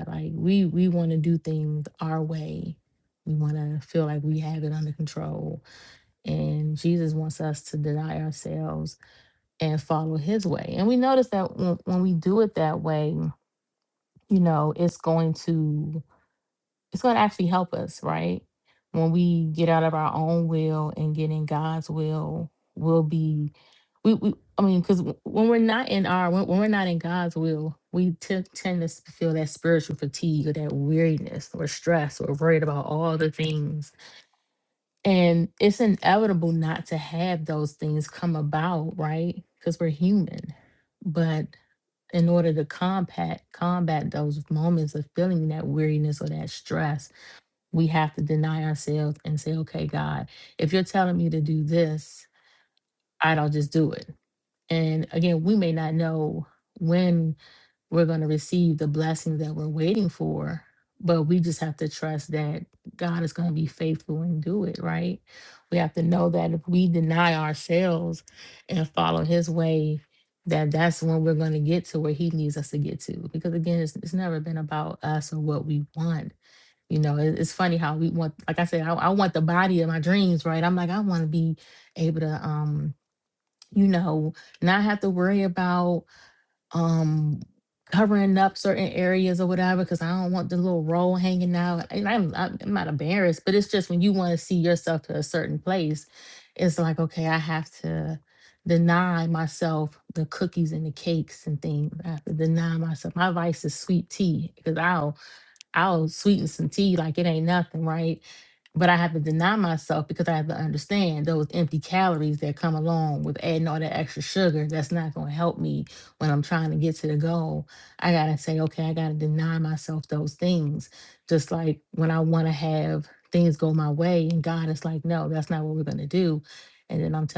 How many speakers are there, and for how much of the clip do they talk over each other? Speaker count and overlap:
1, no overlap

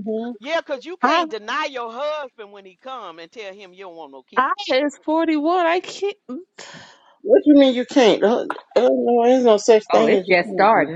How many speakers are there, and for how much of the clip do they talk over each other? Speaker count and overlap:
4, about 8%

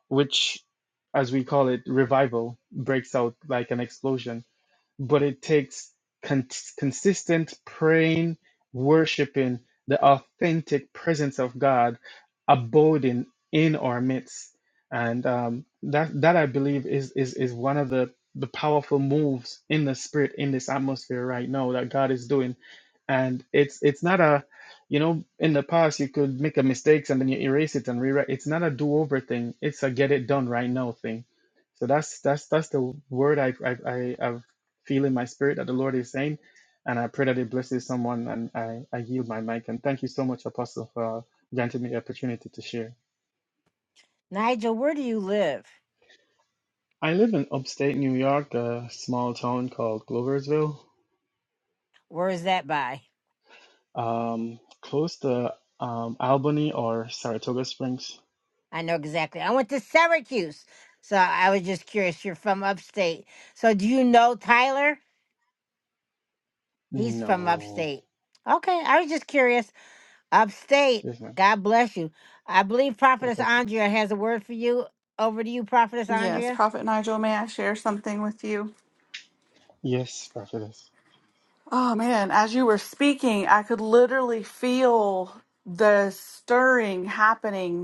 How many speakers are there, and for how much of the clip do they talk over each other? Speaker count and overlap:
3, about 2%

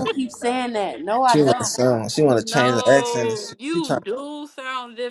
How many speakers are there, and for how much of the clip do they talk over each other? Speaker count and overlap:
3, about 43%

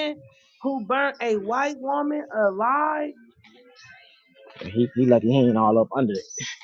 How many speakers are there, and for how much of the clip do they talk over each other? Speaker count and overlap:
2, no overlap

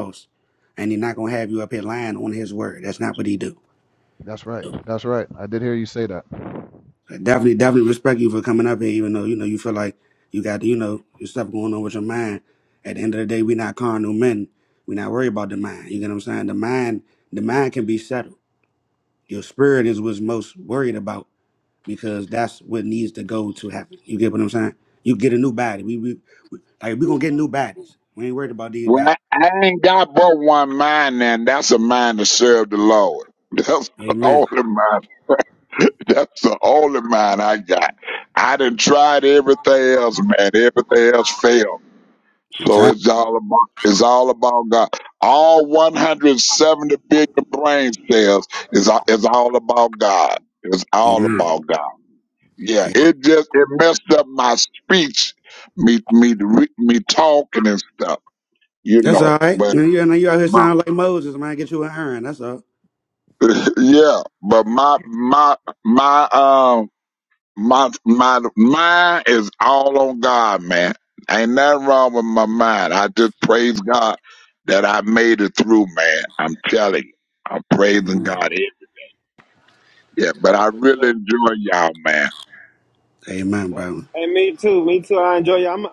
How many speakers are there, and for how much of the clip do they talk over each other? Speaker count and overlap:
4, about 3%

